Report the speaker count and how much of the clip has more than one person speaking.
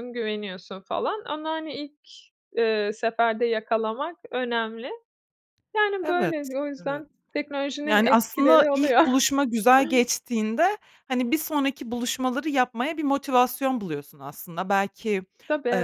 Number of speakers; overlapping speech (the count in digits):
2, about 12%